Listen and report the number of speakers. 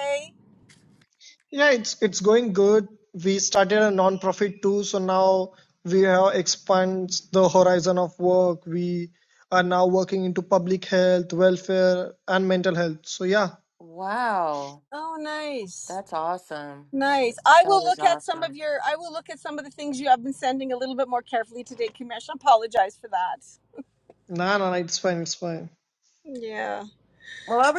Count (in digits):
3